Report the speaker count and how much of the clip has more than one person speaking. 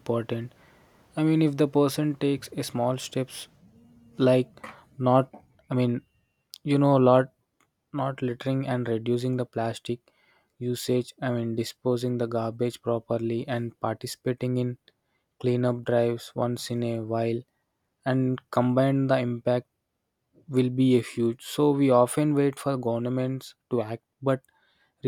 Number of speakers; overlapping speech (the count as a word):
one, no overlap